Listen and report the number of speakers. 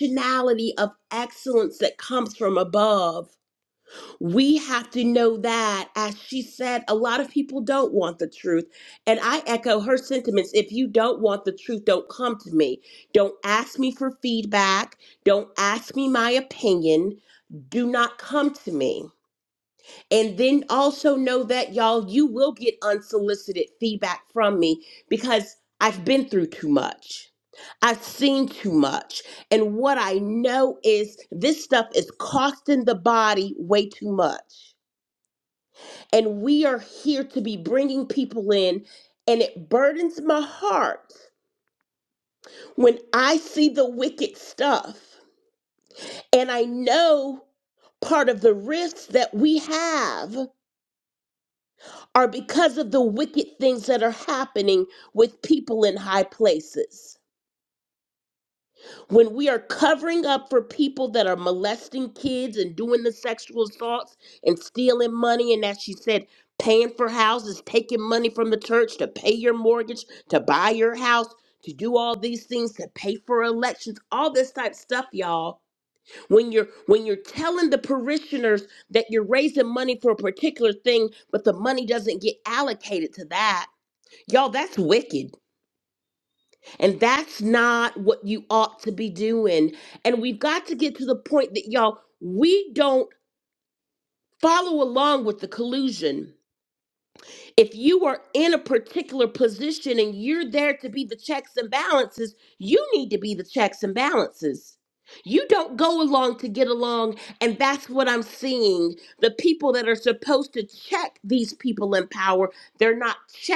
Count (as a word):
one